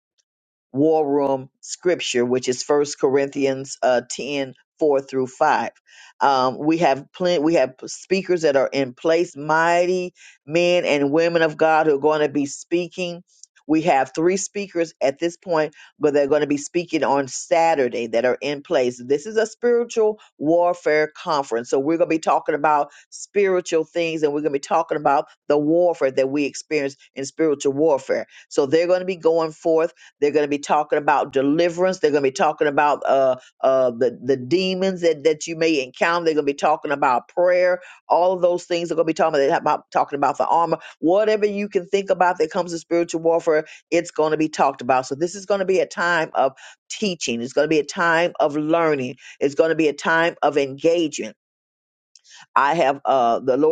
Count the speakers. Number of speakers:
one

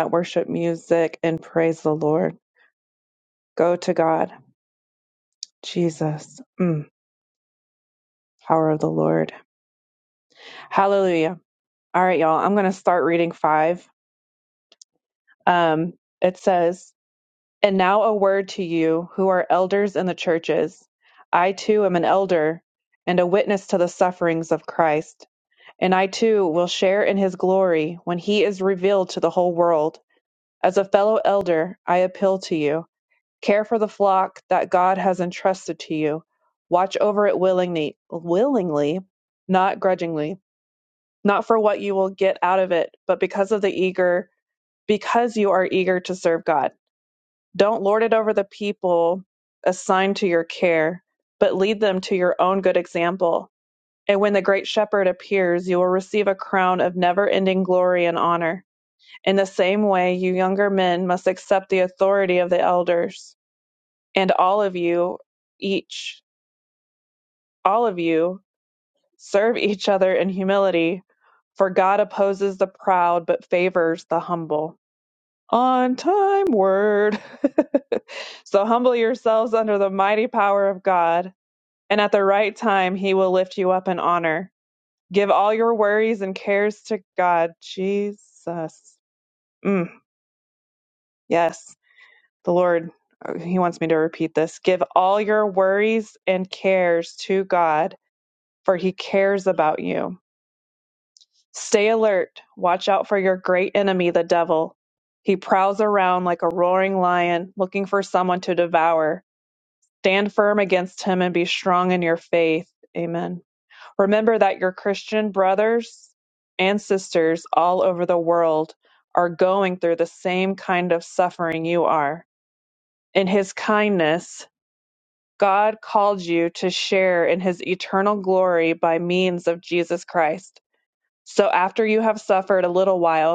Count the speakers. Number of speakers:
one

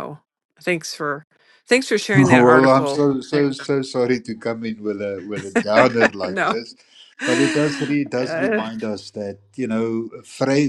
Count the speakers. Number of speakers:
two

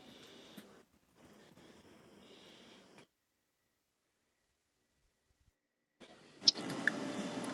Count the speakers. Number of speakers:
zero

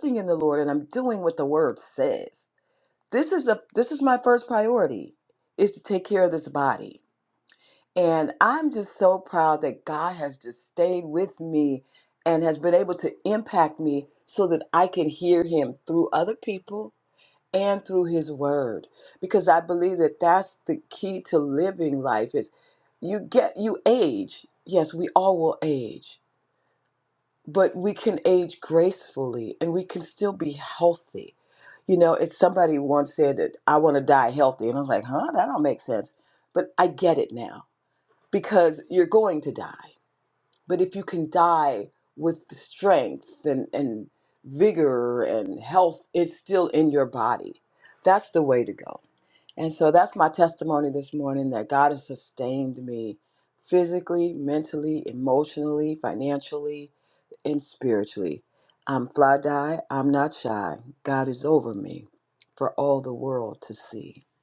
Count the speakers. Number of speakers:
one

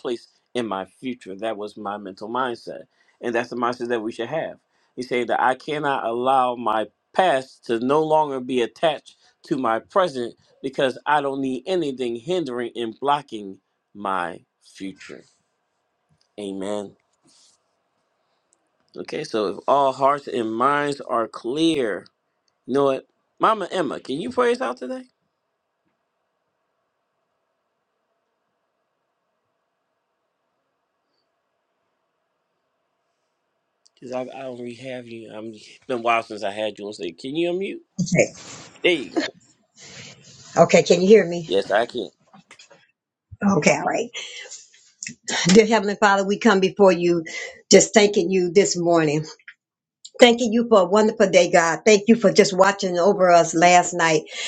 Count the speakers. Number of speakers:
two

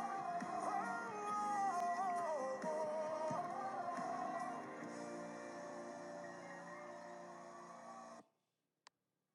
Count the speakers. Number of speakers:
zero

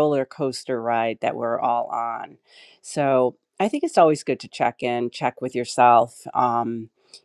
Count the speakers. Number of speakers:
one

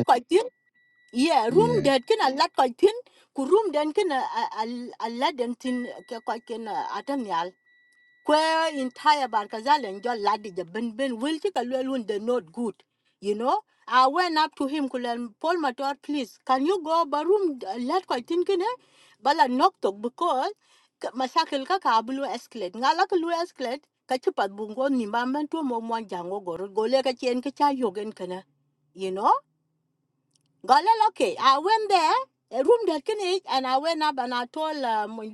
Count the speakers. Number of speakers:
one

